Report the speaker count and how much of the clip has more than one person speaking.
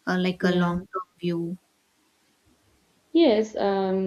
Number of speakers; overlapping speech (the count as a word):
two, about 10%